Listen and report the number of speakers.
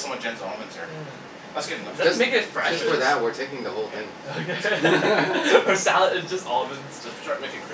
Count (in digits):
3